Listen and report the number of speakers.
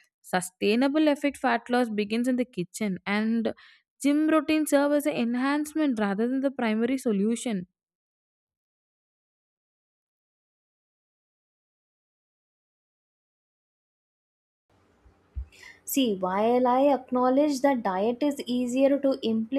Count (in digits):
2